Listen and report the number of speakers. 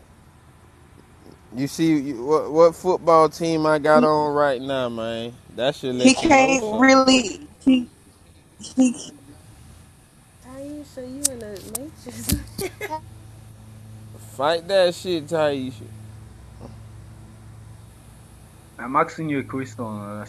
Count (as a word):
four